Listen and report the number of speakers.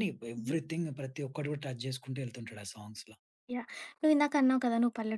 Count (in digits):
2